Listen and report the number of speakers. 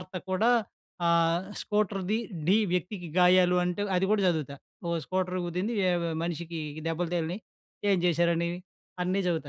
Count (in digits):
1